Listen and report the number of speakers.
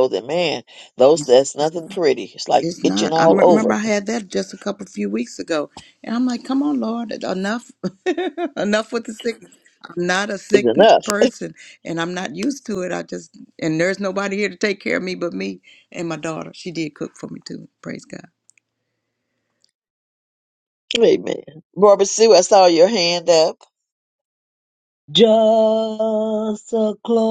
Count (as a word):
three